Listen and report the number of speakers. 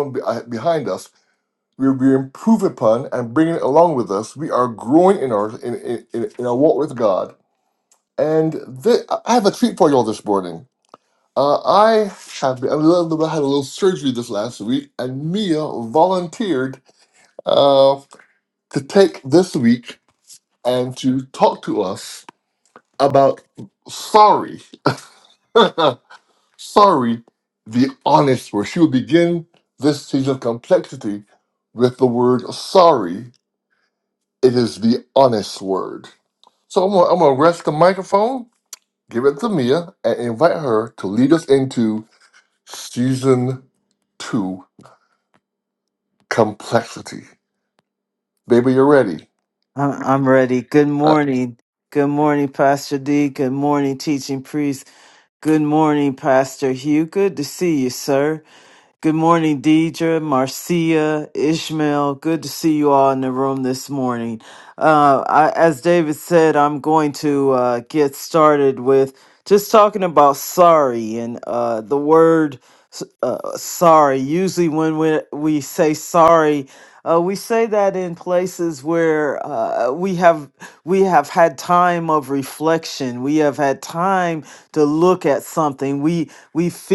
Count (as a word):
two